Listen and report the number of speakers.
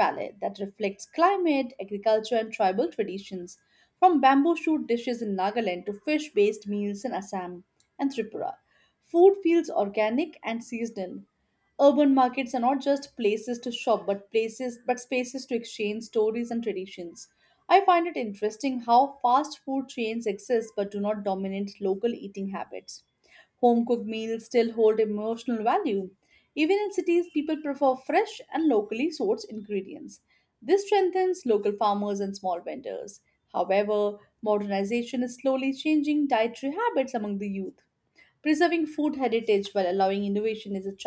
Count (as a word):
one